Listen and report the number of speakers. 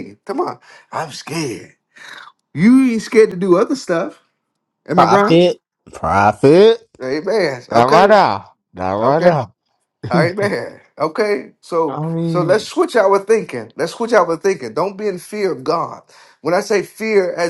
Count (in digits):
2